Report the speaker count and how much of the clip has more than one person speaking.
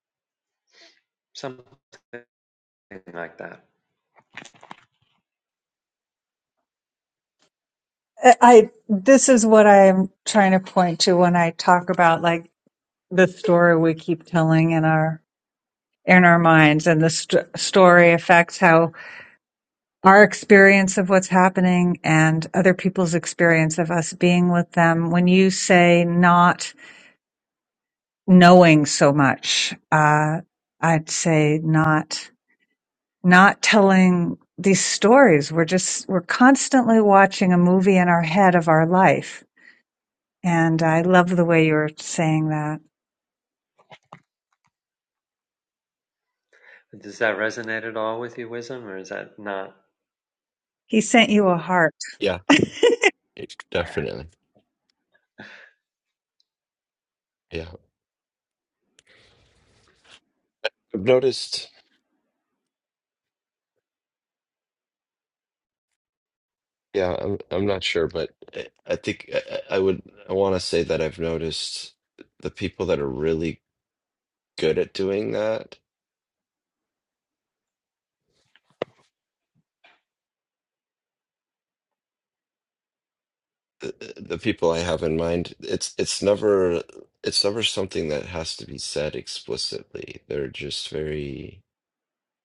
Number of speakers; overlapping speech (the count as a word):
three, no overlap